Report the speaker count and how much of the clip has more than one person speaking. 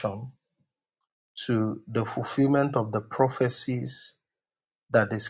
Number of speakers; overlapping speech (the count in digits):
1, no overlap